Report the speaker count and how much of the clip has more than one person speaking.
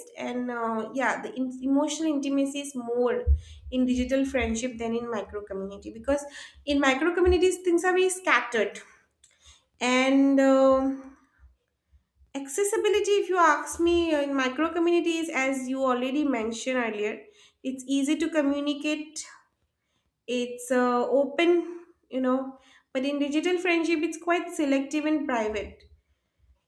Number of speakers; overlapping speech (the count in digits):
1, no overlap